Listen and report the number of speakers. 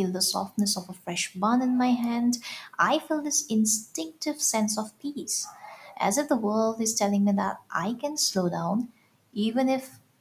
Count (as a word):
one